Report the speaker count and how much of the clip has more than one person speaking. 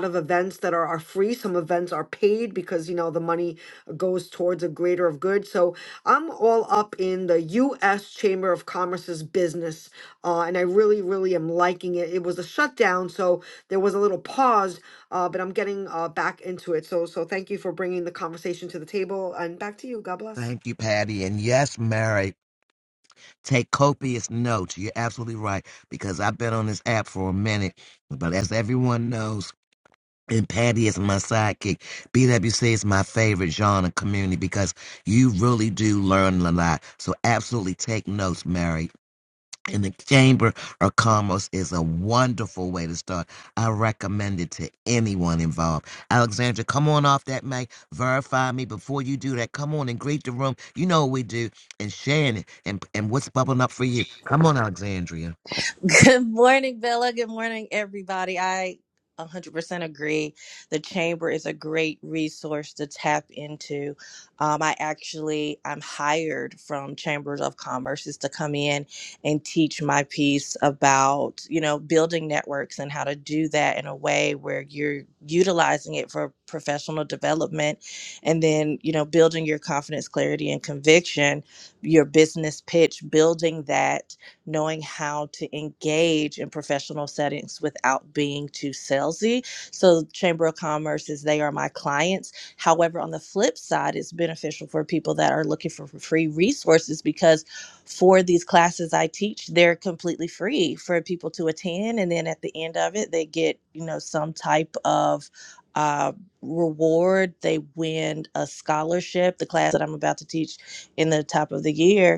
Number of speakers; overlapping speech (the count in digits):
3, no overlap